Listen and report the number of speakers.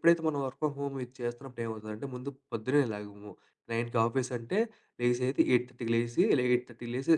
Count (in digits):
1